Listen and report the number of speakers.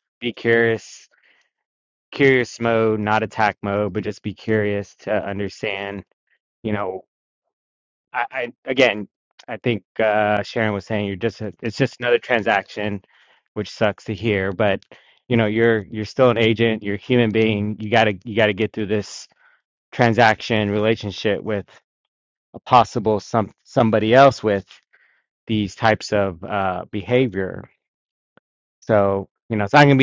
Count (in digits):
1